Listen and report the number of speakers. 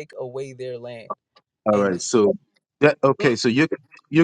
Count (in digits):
2